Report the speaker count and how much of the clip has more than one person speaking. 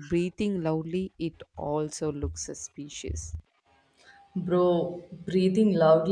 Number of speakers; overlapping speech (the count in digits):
2, no overlap